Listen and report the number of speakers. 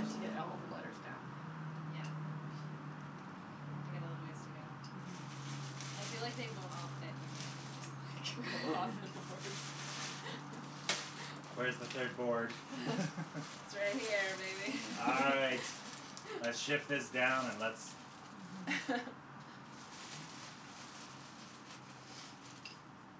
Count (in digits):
3